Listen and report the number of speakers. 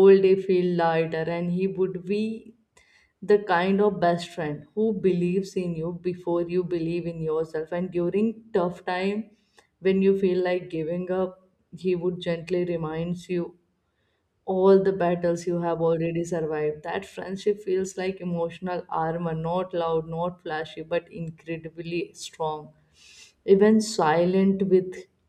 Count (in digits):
1